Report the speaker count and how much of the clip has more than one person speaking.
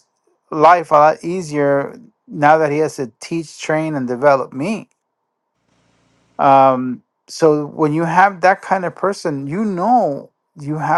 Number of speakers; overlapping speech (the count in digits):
1, no overlap